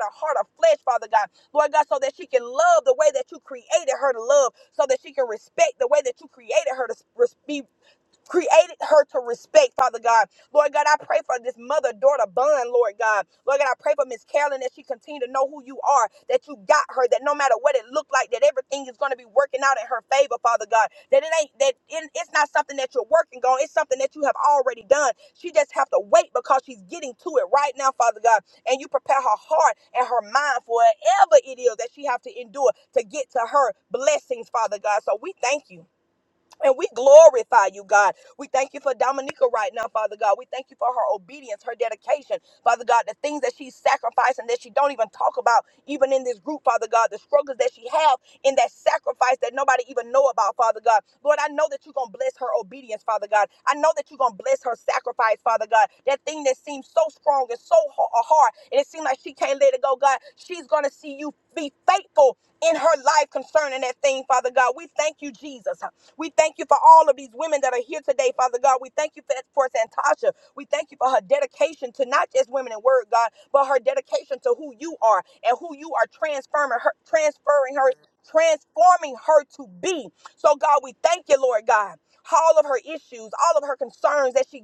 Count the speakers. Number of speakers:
one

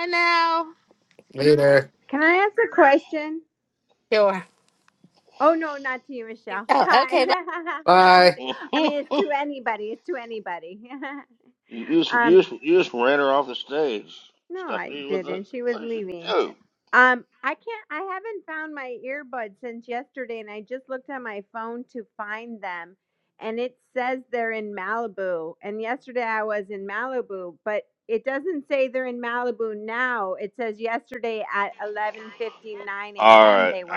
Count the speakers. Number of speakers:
four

